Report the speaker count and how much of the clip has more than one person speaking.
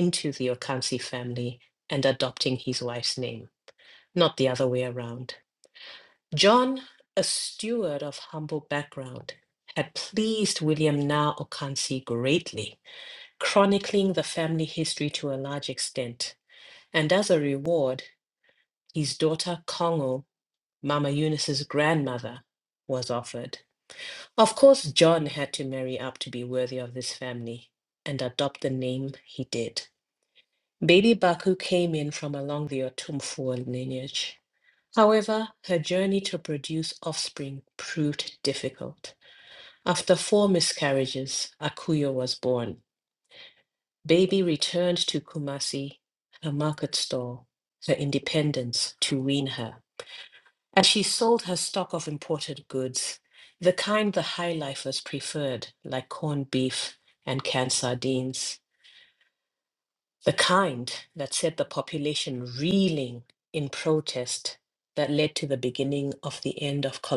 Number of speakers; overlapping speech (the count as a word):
one, no overlap